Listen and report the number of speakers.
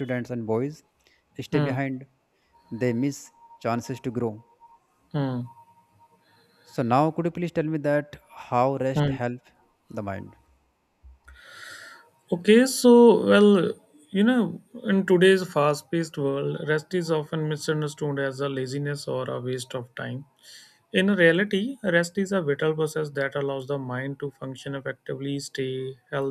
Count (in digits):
2